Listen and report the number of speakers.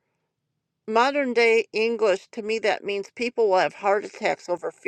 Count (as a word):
one